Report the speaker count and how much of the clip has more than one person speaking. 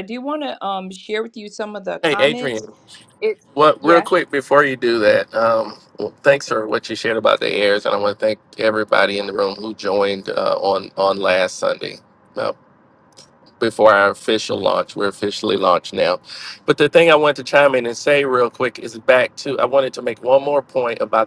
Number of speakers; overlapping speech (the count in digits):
2, about 3%